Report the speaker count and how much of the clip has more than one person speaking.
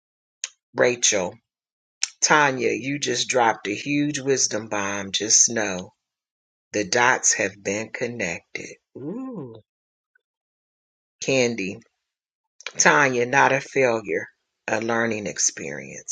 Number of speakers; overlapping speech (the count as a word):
one, no overlap